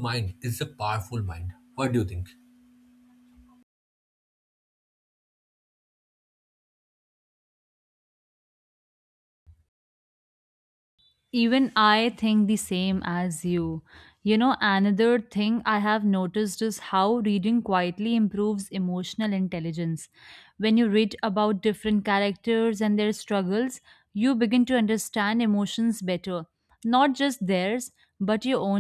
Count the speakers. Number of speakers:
two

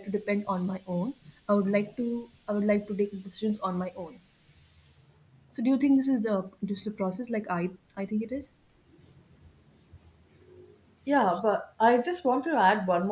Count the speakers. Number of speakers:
two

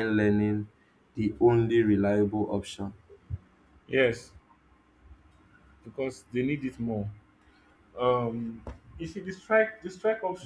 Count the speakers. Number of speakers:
two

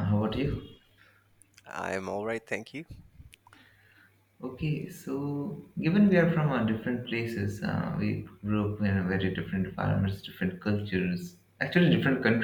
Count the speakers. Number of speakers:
two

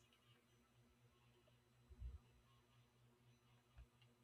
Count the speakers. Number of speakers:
zero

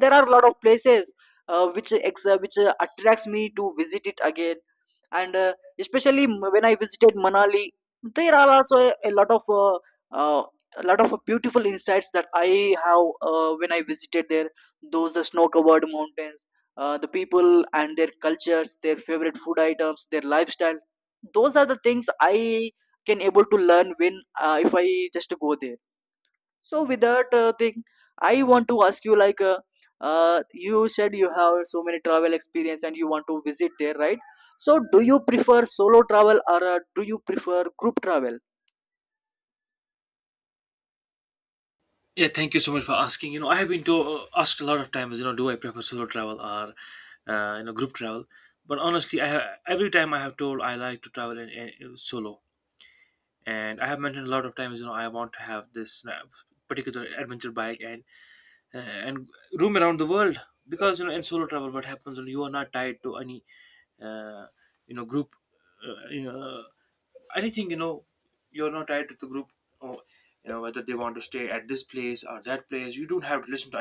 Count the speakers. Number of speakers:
two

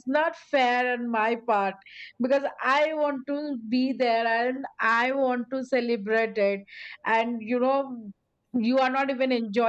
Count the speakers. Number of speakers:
one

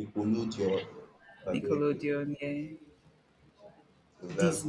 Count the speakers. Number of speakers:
two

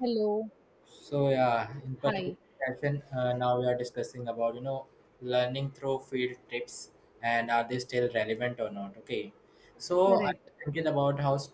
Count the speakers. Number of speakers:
two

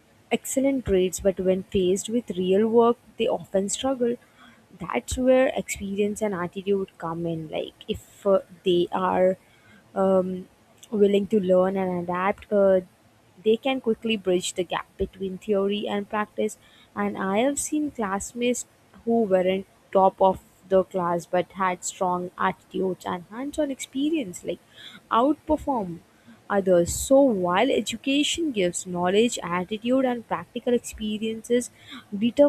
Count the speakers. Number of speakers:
one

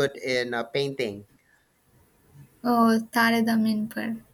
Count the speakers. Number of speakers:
two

